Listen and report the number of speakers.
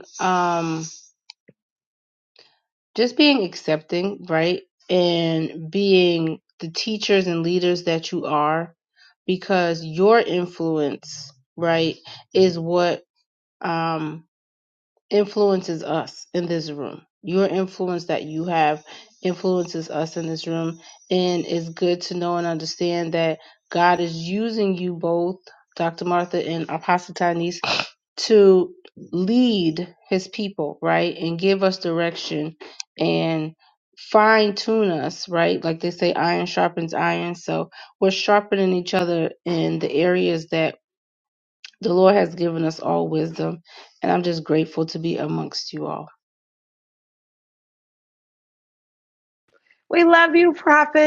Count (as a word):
two